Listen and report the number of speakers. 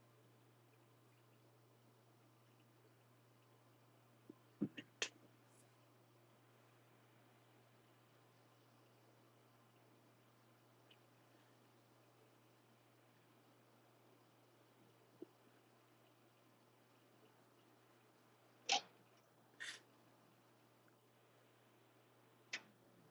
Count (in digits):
0